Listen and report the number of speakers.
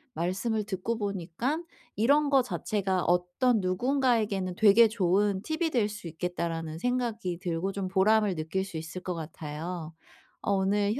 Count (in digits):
1